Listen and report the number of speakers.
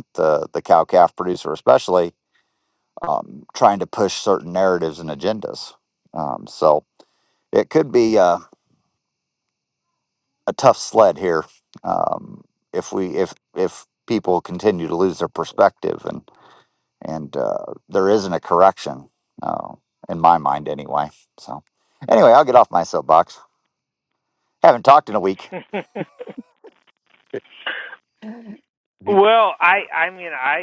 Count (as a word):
two